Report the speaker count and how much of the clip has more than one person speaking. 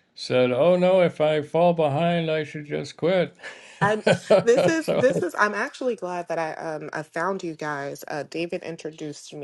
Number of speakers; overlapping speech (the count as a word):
two, about 2%